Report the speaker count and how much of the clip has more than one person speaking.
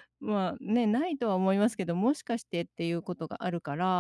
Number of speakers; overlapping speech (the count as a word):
one, no overlap